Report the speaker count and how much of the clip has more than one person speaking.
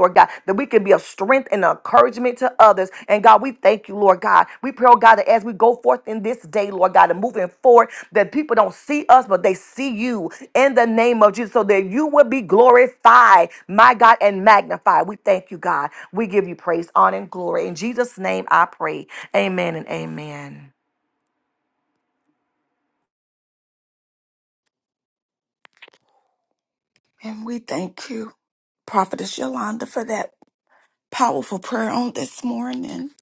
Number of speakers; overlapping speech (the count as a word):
two, no overlap